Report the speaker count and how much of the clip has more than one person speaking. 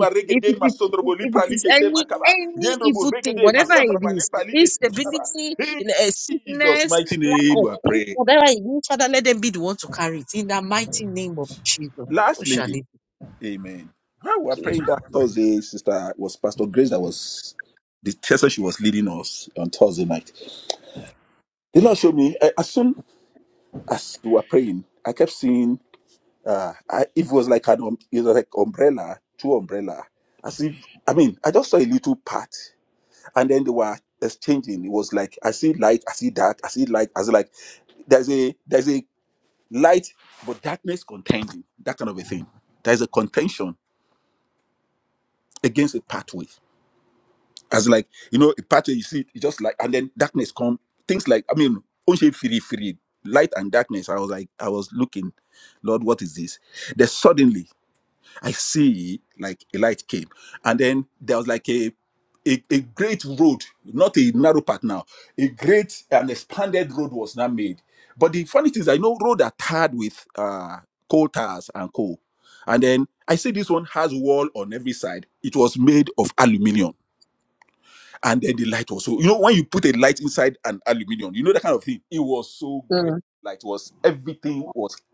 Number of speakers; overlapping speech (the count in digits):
2, about 8%